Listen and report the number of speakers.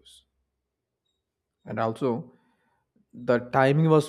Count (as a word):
one